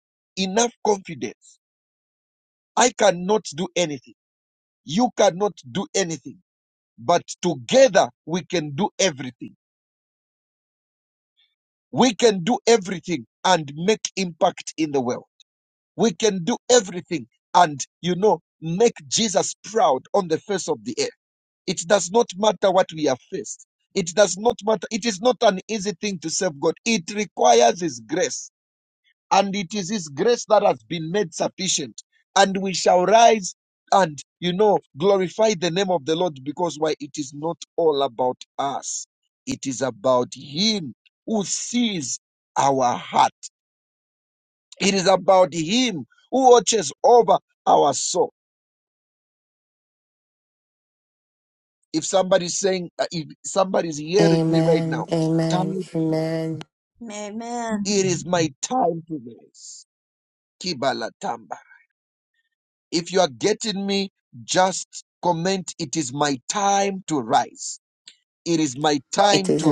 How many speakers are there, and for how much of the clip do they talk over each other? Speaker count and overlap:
3, about 3%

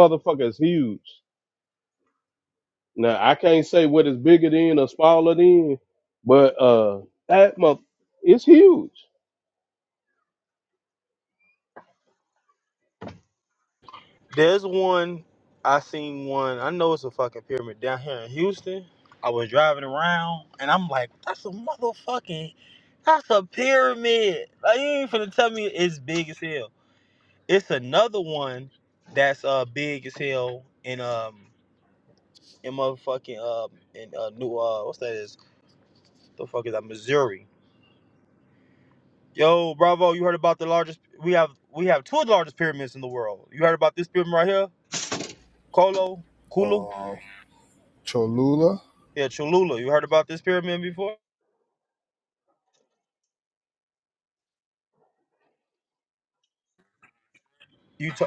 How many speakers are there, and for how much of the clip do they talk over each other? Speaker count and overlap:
3, under 1%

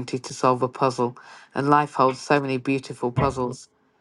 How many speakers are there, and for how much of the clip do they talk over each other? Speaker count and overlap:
1, no overlap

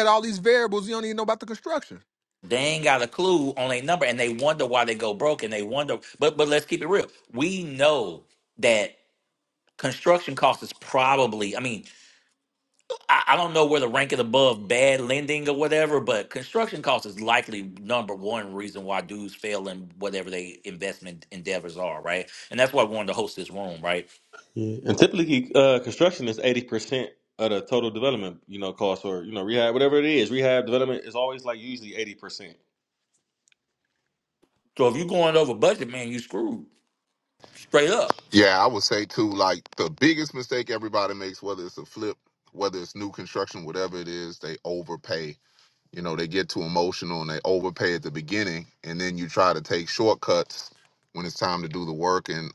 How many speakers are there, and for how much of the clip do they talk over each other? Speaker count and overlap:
4, no overlap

